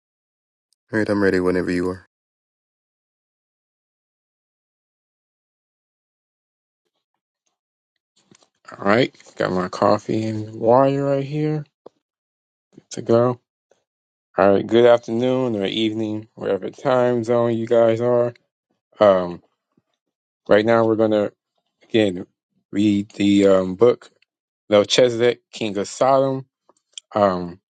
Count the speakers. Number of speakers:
2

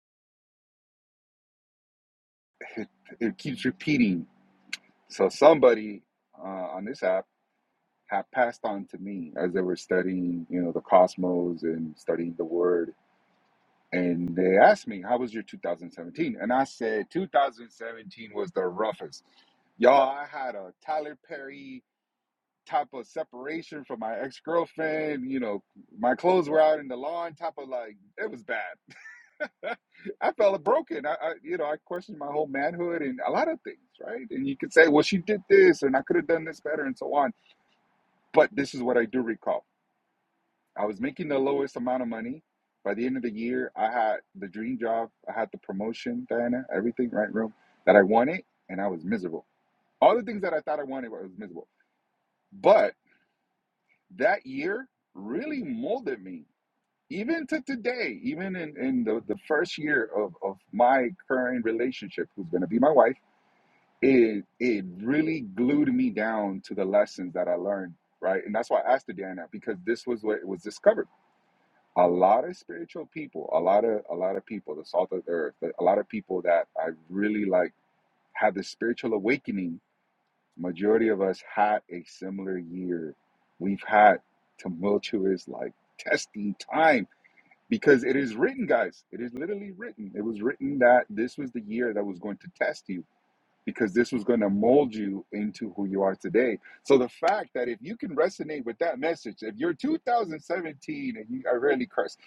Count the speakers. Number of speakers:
1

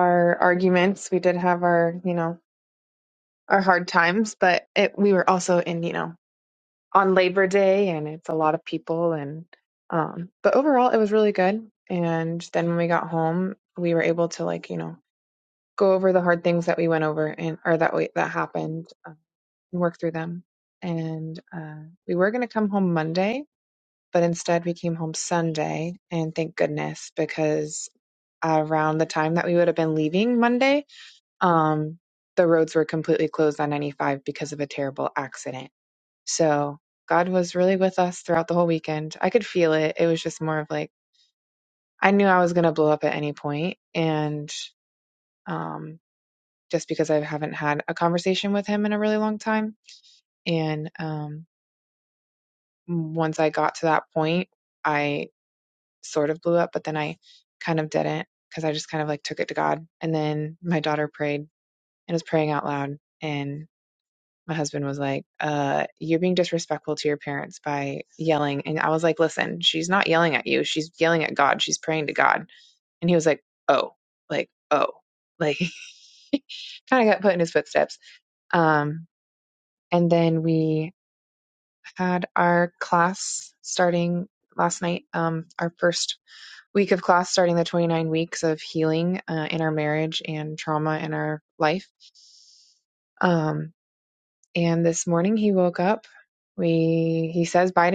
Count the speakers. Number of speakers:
1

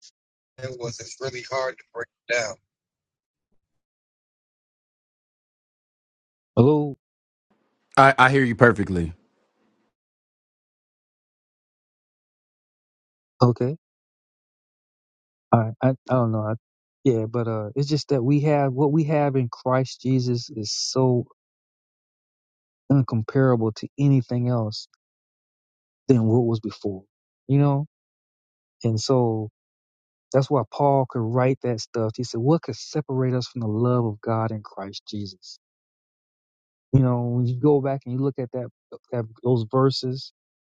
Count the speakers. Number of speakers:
3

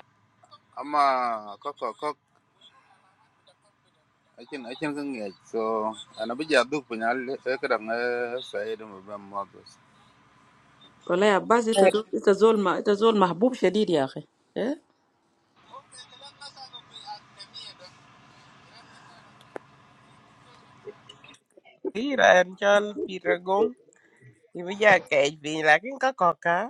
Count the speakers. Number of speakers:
3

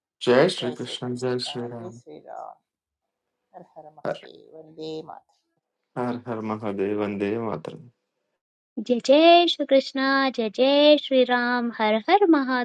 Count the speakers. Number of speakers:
3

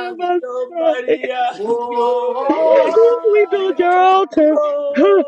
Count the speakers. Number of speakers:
3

